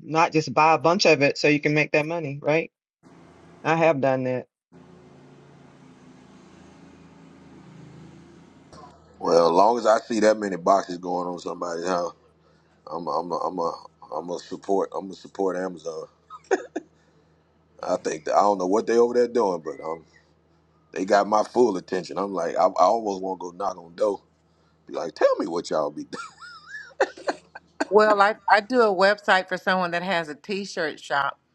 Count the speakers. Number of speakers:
three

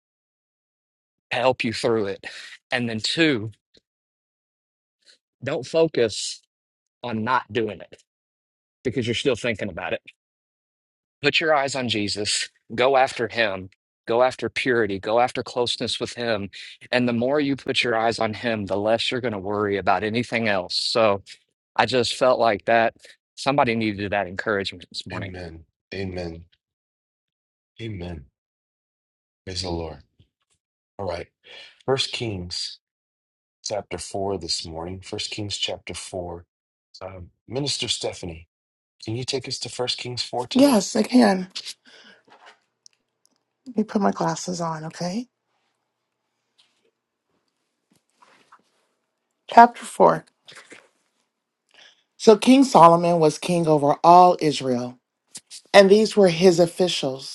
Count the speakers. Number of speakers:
three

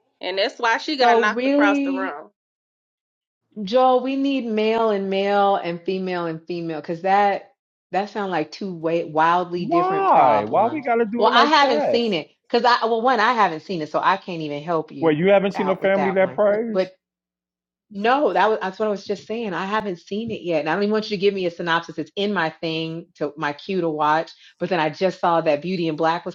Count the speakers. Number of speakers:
three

